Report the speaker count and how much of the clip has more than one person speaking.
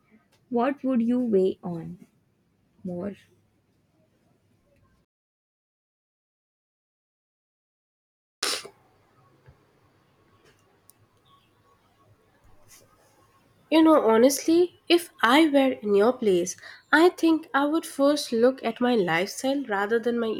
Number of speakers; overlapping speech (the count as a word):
two, no overlap